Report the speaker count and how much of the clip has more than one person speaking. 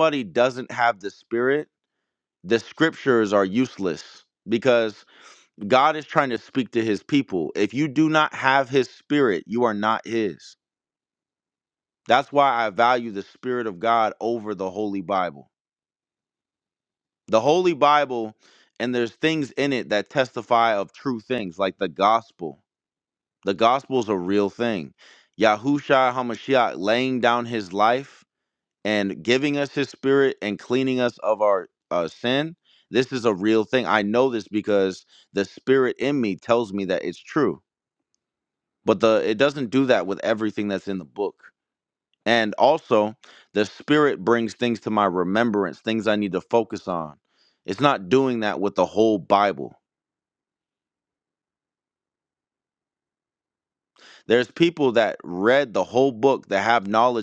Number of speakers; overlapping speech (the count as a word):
one, no overlap